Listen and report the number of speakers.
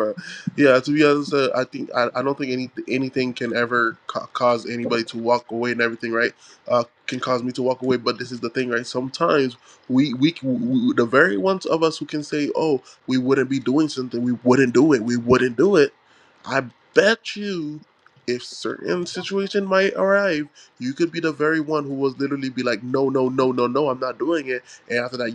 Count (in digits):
1